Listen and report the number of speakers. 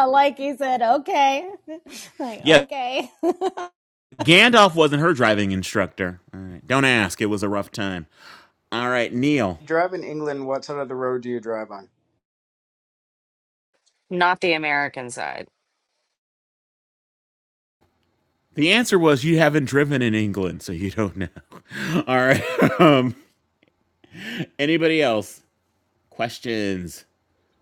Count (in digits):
4